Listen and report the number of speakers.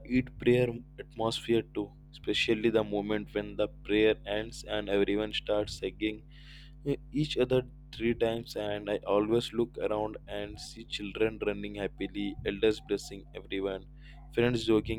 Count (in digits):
1